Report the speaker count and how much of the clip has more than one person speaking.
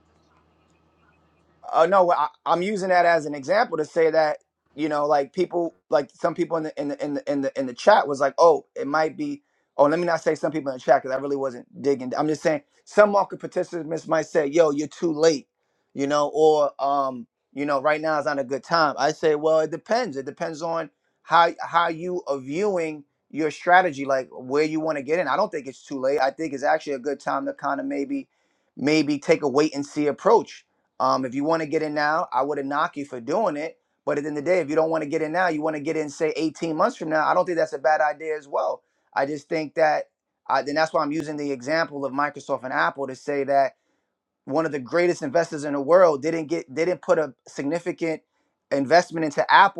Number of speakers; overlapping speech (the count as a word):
one, no overlap